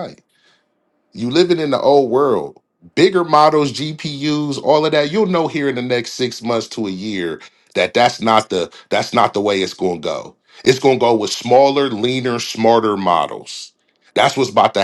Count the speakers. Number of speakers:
one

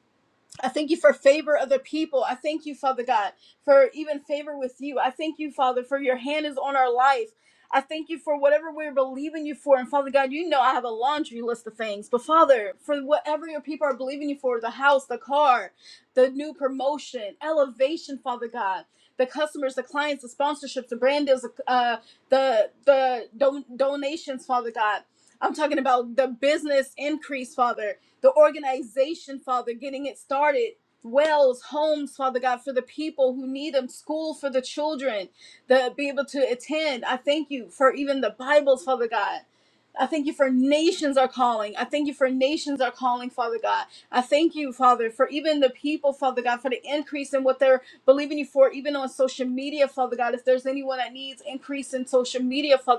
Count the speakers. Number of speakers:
one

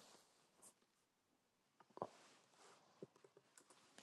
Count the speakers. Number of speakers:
zero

